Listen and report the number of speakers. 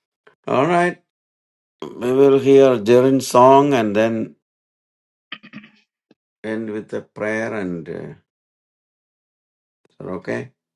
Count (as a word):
one